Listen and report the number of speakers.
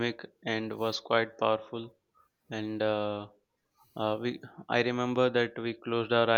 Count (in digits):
1